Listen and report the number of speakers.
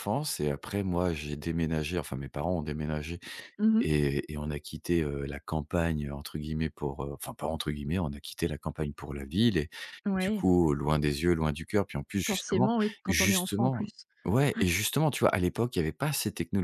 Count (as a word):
two